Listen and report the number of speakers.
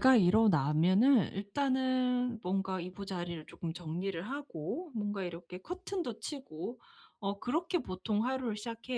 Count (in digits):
1